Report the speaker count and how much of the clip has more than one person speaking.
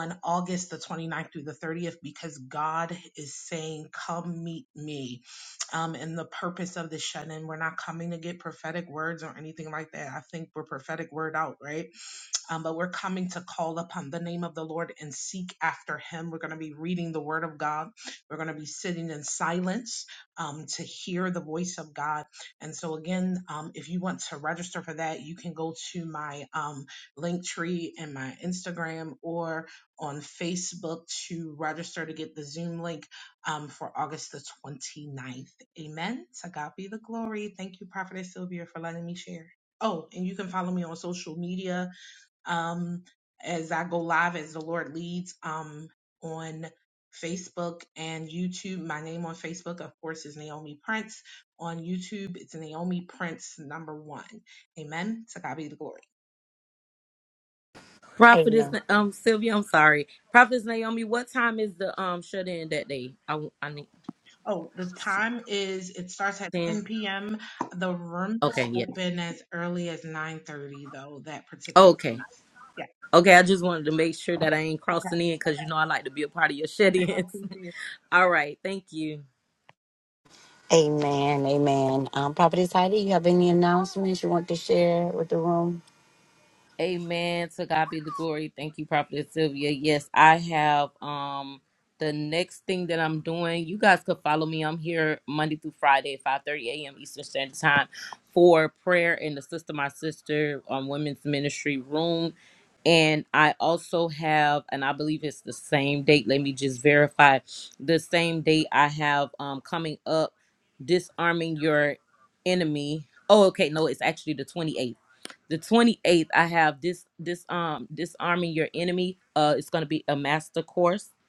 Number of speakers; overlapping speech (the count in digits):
3, about 2%